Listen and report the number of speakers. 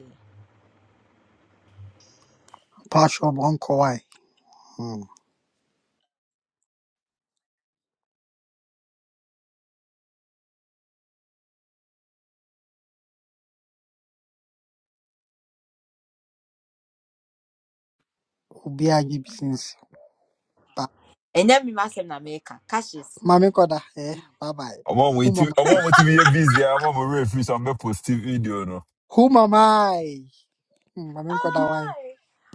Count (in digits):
3